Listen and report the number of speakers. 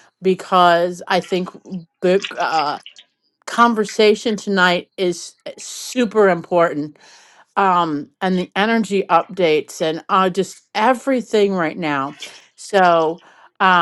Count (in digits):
1